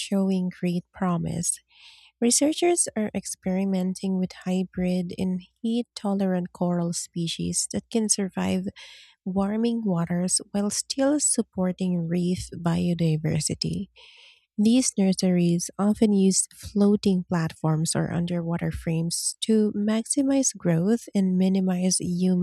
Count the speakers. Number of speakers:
1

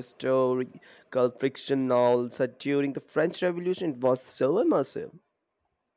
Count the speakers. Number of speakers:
1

